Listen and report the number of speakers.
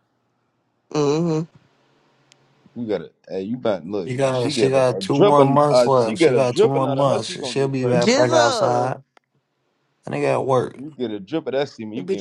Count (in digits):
3